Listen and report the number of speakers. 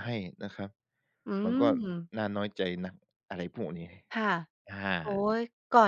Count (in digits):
2